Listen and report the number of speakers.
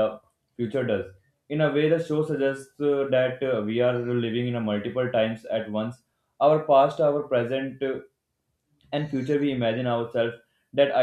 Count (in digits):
1